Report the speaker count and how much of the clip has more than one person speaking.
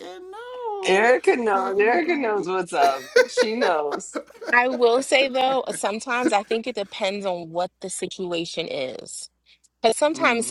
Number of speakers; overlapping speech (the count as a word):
three, about 15%